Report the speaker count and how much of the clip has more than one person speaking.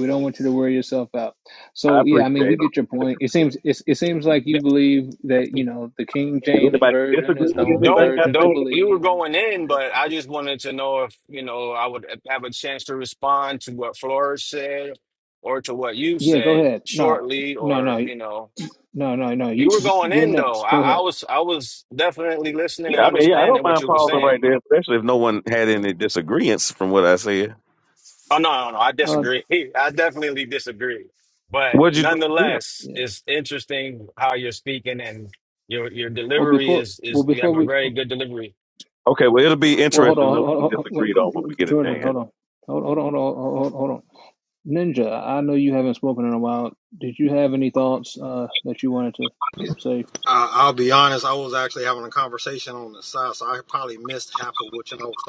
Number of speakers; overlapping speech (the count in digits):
4, about 23%